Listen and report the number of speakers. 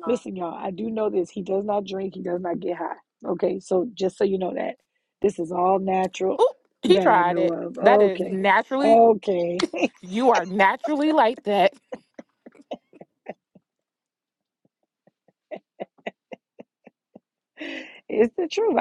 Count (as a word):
two